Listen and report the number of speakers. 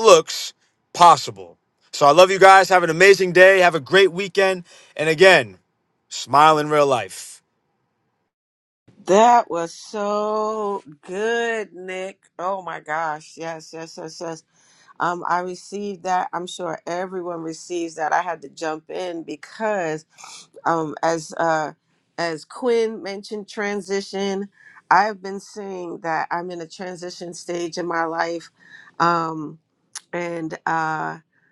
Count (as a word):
two